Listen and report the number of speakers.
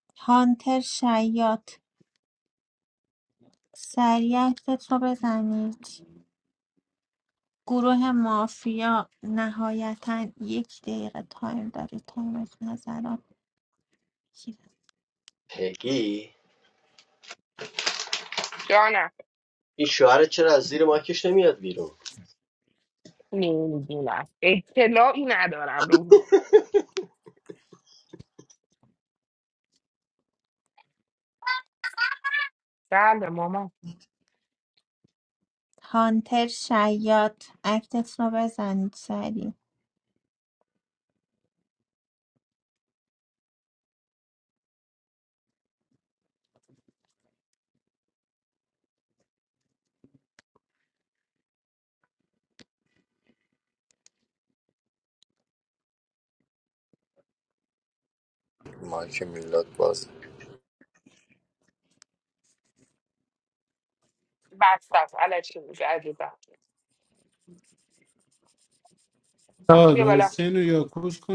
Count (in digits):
5